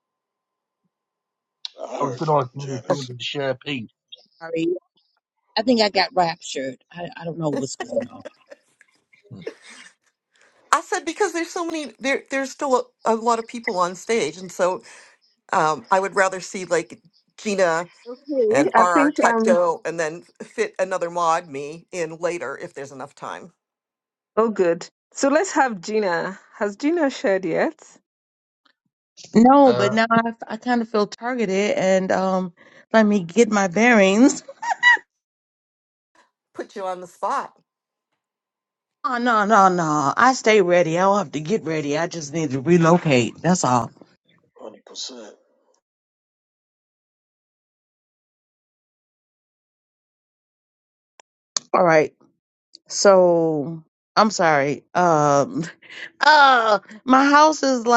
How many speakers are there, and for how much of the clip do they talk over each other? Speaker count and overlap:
5, about 4%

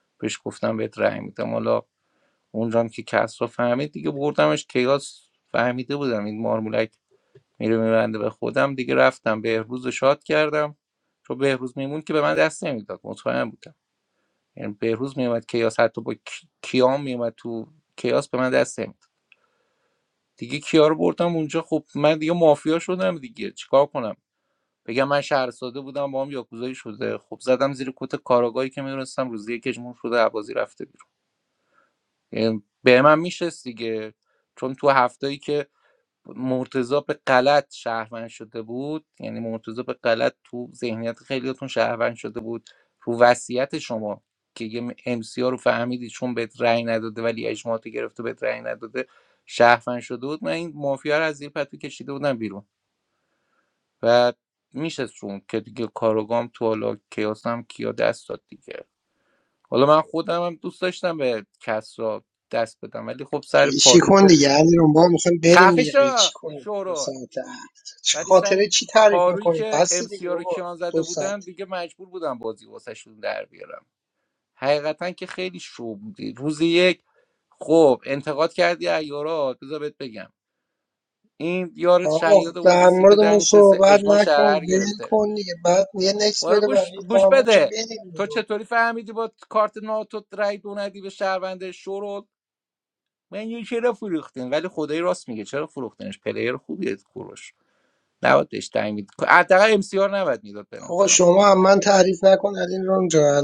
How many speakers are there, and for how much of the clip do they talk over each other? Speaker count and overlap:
2, about 9%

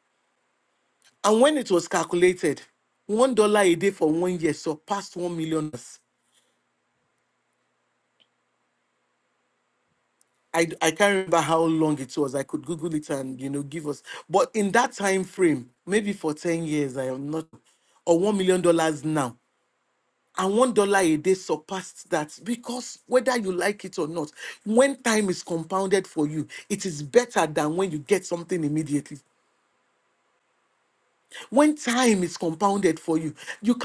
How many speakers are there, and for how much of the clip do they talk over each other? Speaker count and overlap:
1, no overlap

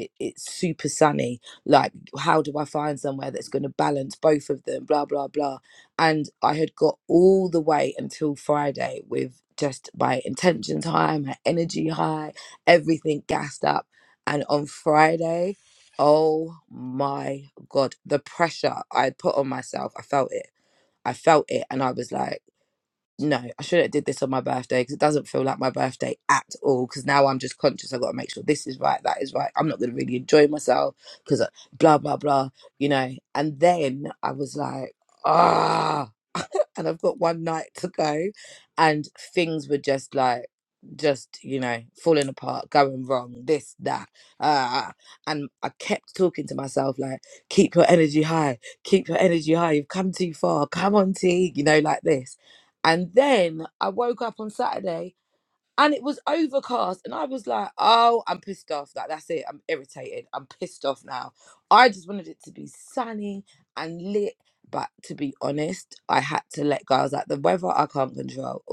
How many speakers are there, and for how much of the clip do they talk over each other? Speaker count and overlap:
1, no overlap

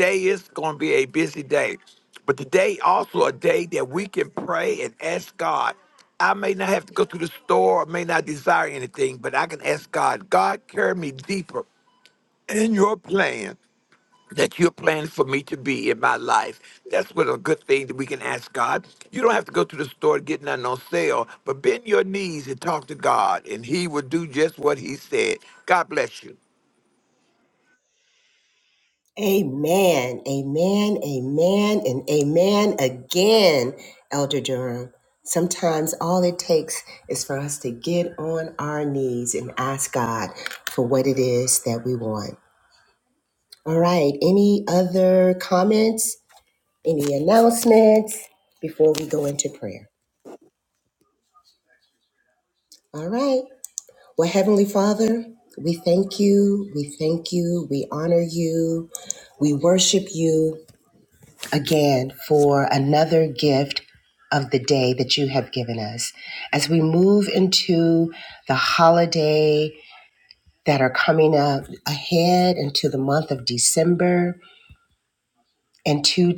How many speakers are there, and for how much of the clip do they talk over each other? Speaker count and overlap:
2, no overlap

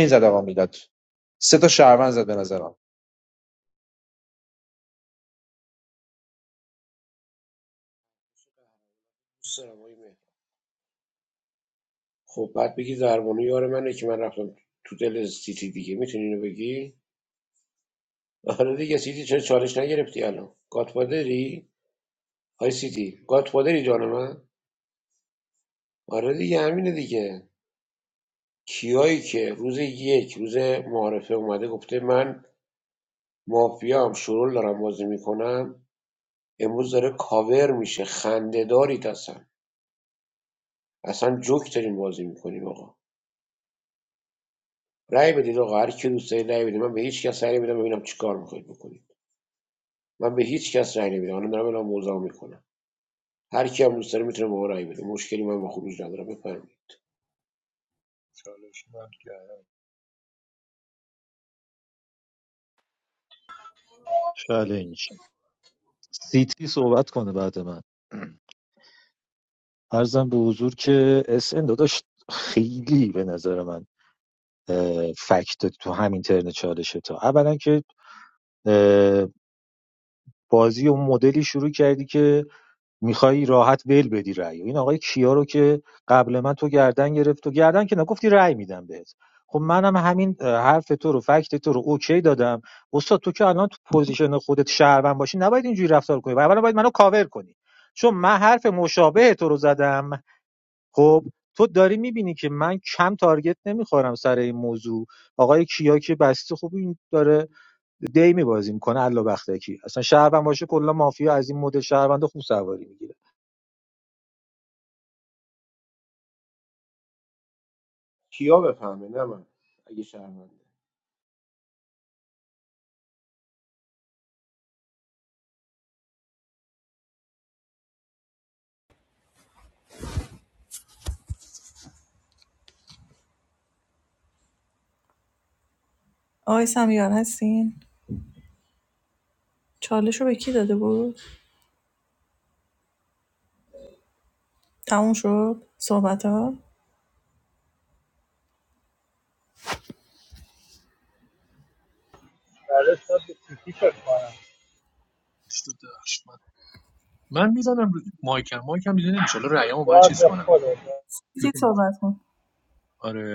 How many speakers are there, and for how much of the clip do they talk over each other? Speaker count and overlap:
6, under 1%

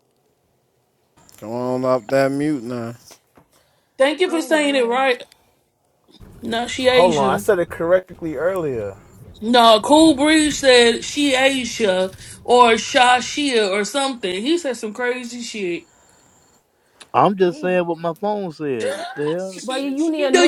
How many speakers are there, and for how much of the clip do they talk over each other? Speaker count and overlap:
5, about 9%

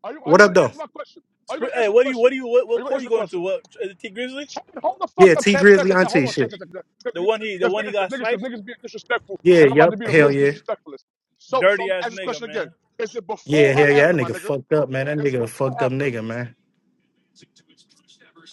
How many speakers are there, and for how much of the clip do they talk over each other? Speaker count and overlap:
3, about 47%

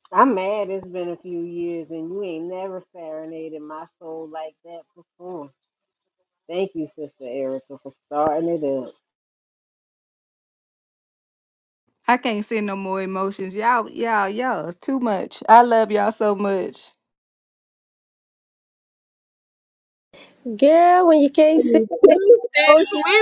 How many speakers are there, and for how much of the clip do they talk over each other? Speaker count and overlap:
4, about 2%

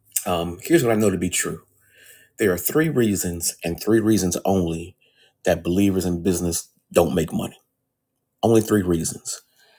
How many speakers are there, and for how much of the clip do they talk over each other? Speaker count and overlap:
1, no overlap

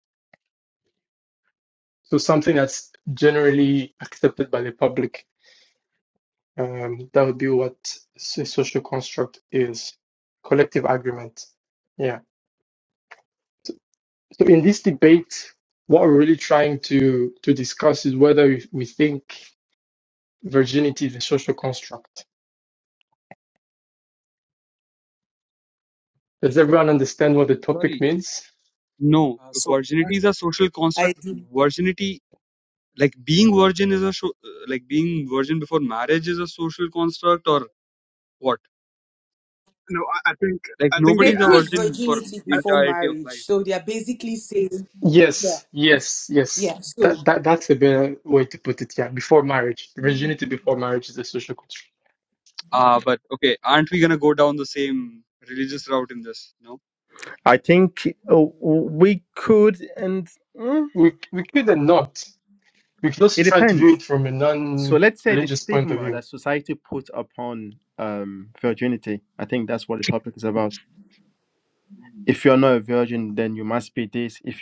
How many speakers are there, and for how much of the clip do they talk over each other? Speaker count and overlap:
5, about 6%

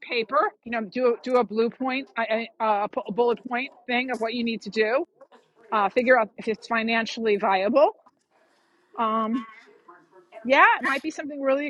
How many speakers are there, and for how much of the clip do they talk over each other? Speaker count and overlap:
1, no overlap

